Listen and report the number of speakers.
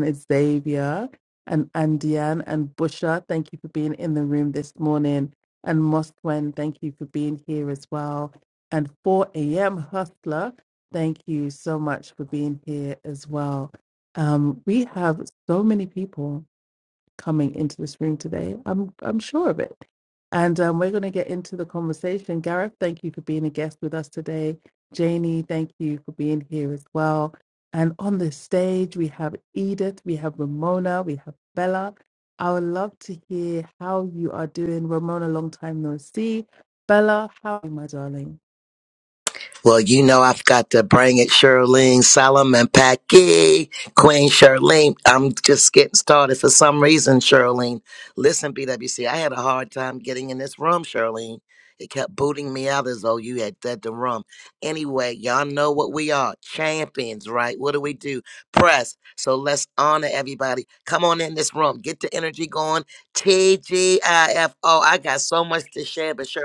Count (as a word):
two